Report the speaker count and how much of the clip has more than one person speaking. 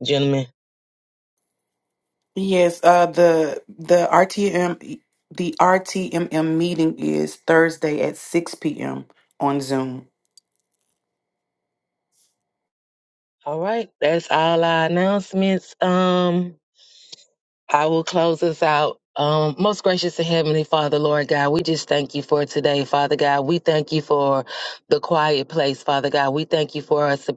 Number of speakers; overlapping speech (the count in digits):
2, no overlap